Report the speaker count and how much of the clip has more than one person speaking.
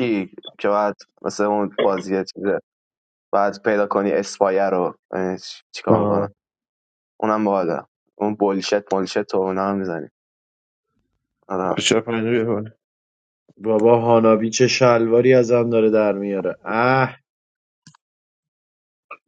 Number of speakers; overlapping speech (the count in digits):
3, about 2%